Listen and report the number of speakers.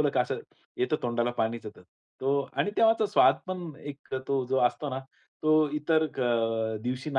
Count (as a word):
one